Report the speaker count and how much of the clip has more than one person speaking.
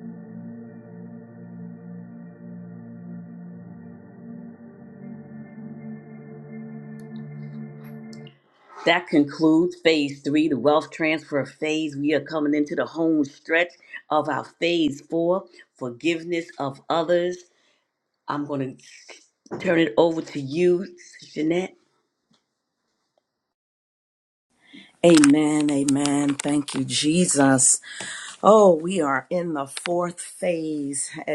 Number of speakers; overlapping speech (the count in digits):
2, no overlap